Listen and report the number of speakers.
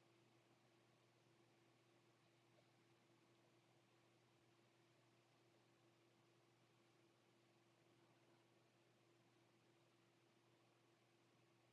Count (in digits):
0